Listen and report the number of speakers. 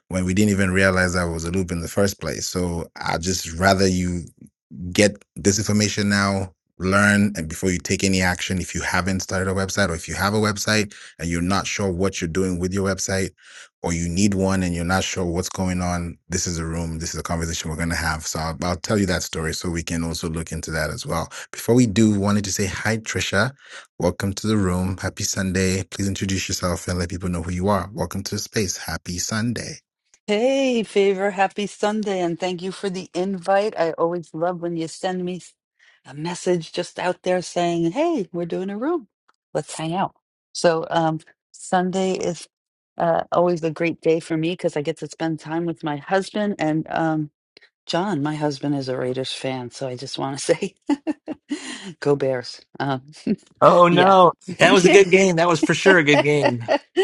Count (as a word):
three